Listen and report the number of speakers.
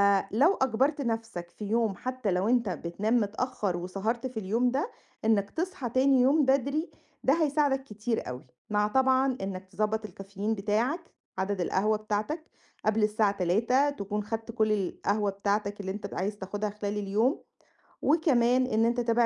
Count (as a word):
one